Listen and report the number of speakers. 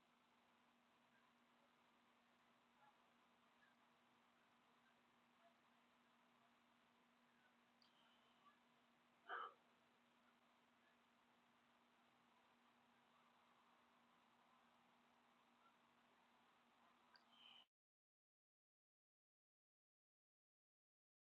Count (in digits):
0